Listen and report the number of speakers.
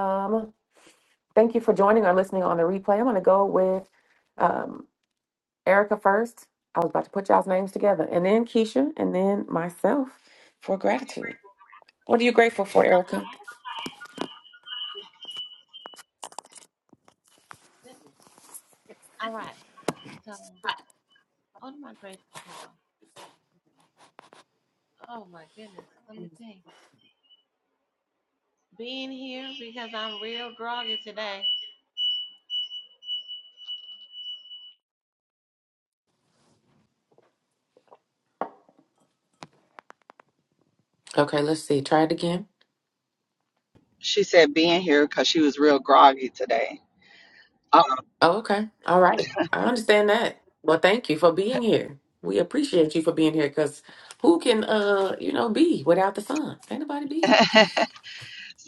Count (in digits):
3